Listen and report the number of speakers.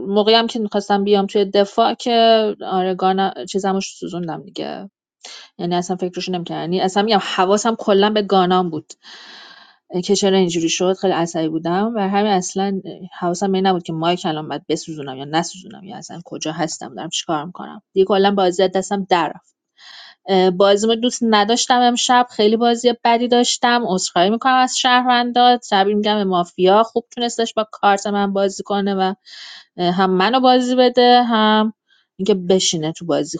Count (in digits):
1